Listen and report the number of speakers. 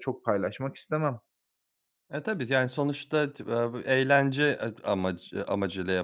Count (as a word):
two